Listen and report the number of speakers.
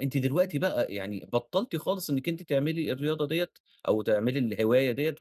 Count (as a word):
one